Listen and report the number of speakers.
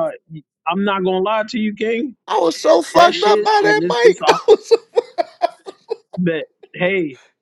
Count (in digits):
2